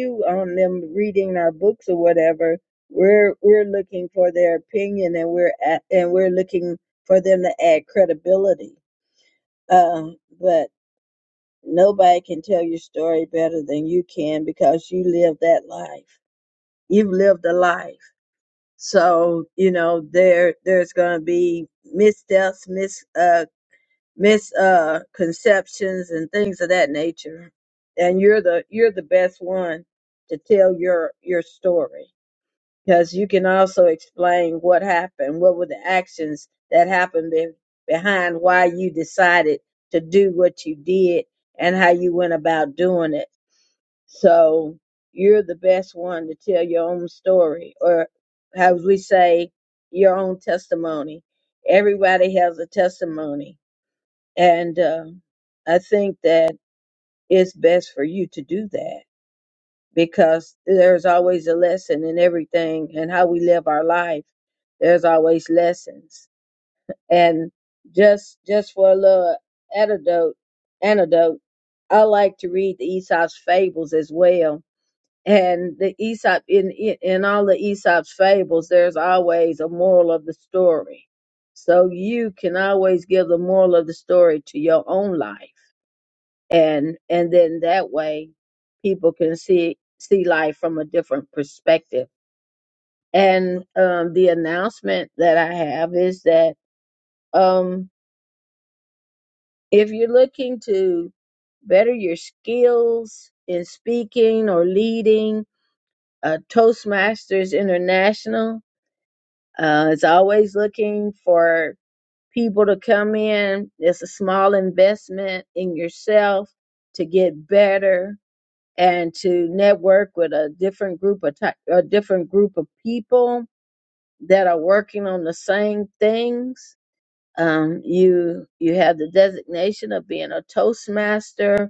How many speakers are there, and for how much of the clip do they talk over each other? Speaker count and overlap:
1, no overlap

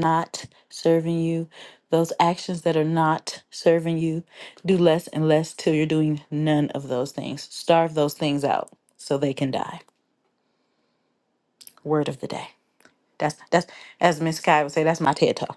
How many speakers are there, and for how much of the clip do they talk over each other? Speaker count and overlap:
1, no overlap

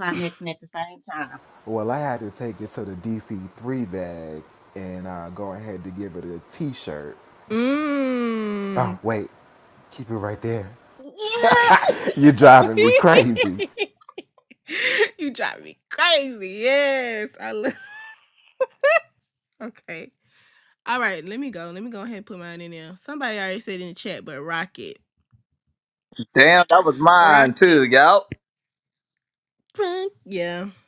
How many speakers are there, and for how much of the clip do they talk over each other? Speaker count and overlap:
4, about 2%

